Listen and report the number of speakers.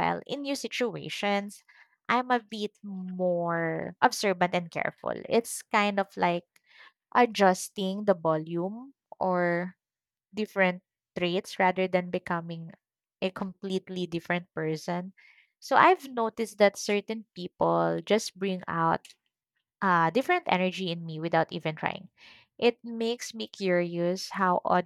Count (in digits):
1